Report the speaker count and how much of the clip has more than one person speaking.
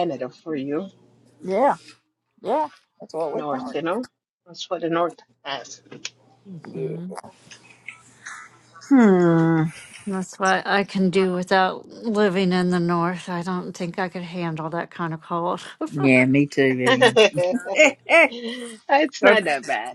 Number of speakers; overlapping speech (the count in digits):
3, about 4%